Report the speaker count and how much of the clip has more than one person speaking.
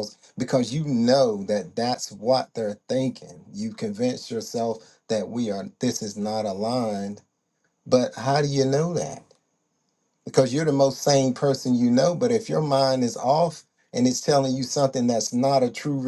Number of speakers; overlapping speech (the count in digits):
1, no overlap